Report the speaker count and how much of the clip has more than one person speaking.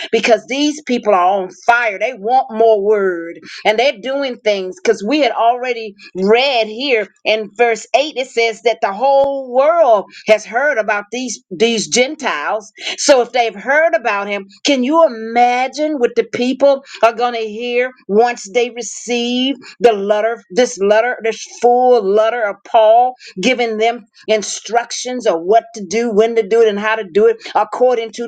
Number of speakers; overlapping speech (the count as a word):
one, no overlap